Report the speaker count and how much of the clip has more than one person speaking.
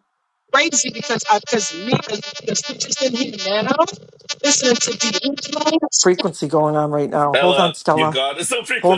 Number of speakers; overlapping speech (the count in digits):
3, about 11%